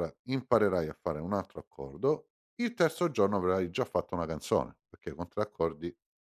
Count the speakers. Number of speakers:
1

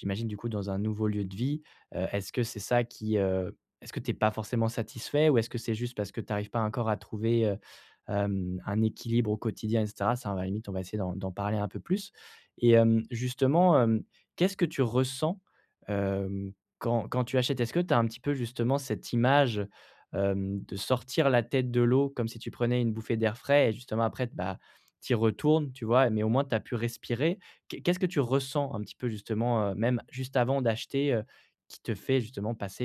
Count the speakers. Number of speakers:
1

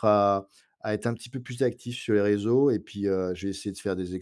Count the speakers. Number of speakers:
1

